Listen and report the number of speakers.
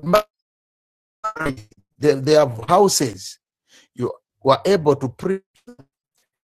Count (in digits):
1